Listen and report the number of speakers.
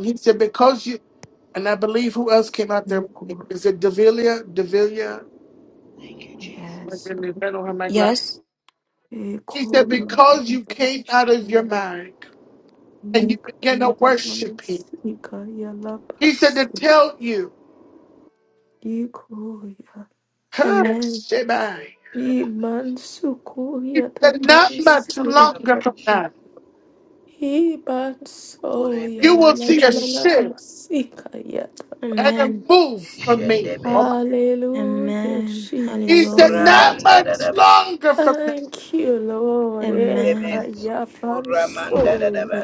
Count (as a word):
four